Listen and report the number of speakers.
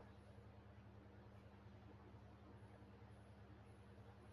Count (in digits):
0